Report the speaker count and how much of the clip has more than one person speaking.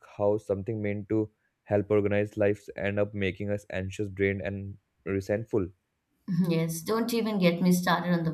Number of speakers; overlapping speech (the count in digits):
2, no overlap